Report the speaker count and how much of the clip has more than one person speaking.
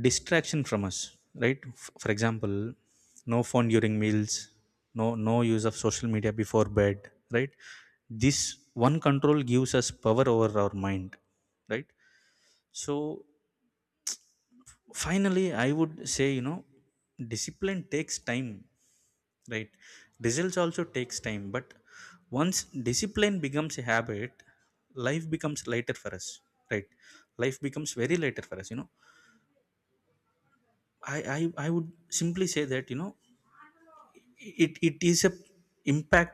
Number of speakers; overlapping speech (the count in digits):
1, no overlap